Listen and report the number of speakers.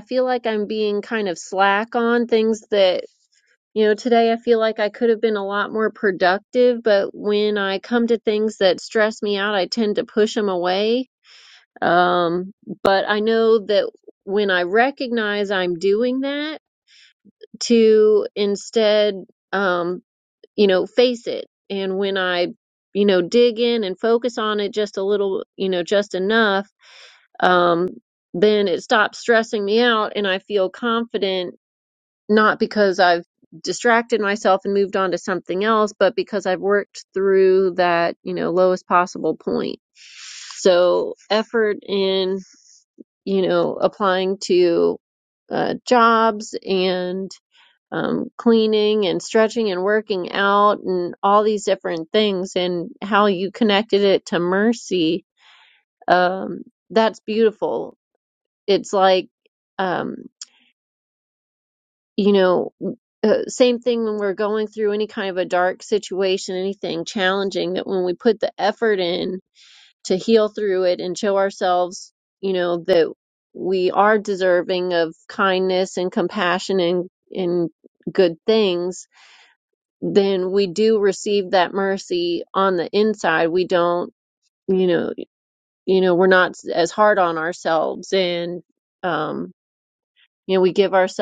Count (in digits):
1